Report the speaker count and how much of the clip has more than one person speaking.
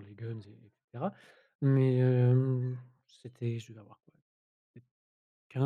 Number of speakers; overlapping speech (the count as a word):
one, no overlap